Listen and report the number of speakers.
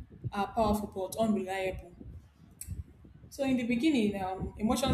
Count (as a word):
one